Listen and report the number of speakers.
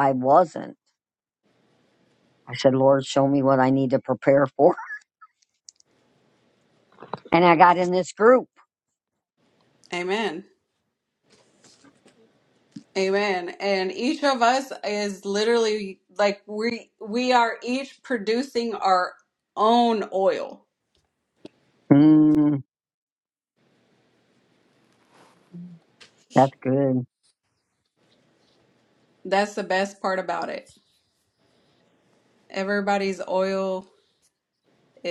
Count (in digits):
2